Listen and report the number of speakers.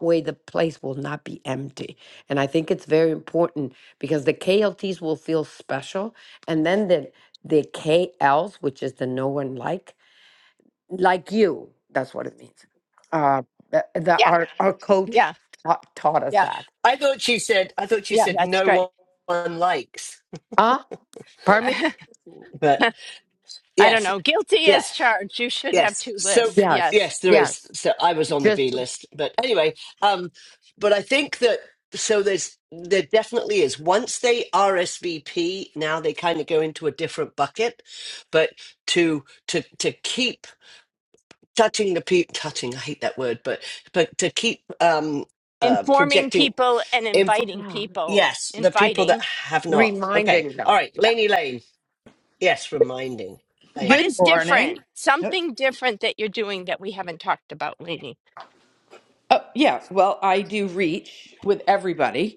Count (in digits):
4